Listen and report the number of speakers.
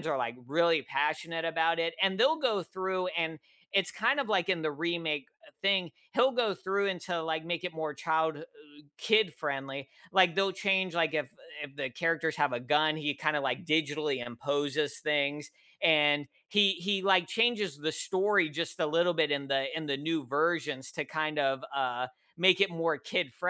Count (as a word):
one